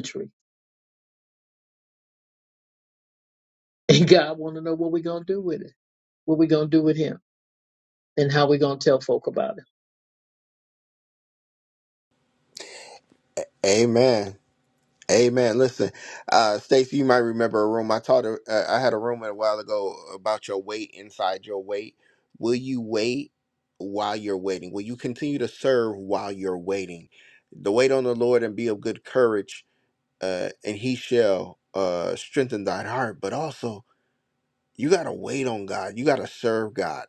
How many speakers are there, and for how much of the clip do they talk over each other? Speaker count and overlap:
2, no overlap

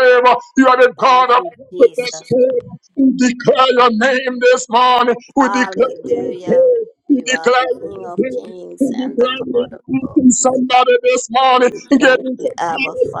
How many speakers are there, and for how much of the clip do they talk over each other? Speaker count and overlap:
2, about 44%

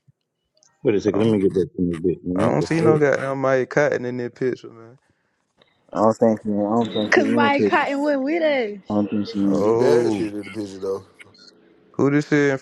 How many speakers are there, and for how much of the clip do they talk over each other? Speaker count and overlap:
5, about 22%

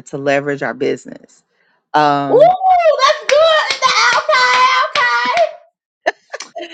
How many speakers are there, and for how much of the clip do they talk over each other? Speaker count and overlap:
2, about 3%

